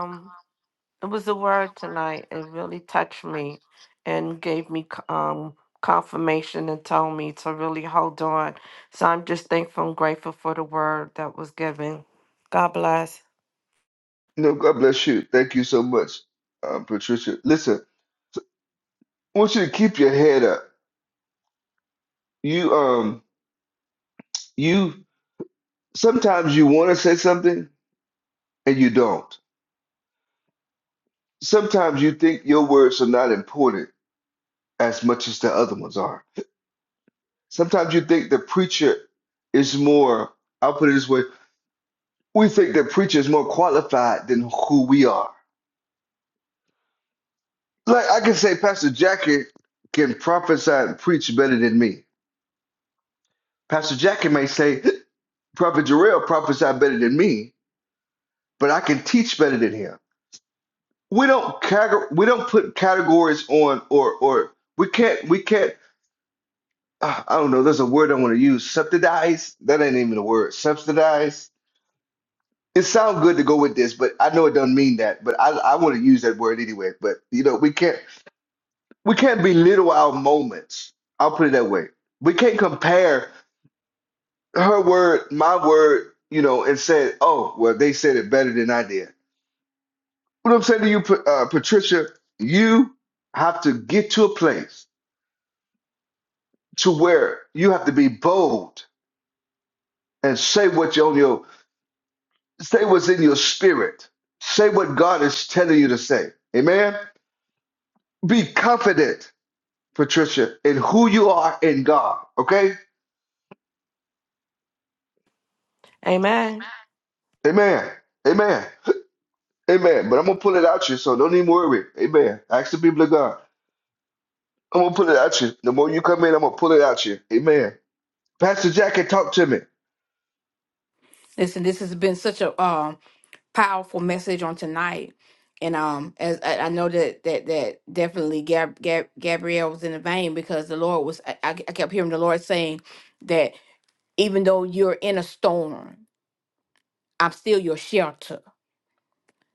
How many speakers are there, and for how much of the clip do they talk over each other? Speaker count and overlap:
3, no overlap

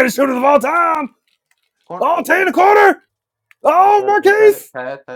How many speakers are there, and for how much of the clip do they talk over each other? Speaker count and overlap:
2, about 23%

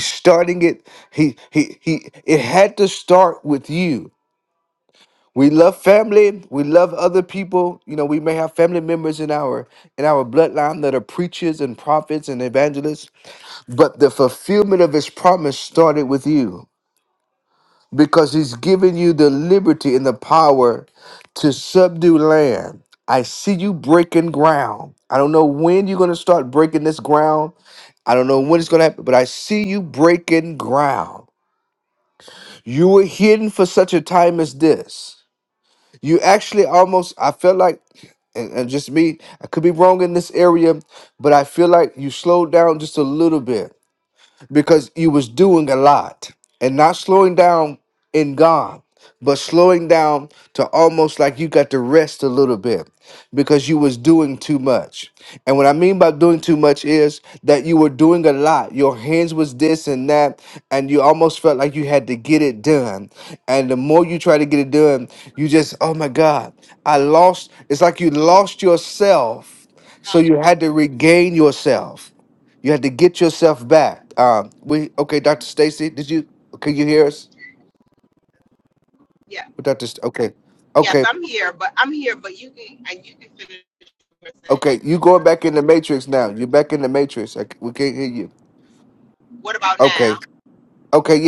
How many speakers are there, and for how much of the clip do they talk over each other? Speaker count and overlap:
2, about 1%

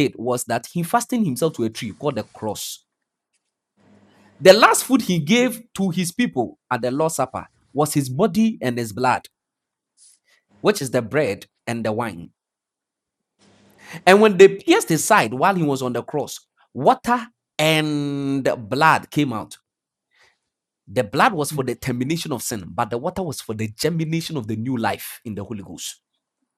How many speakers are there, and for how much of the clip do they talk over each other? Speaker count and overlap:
1, no overlap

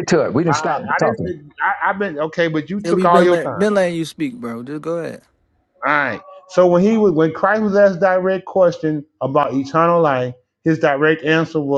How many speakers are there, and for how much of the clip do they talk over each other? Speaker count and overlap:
3, about 14%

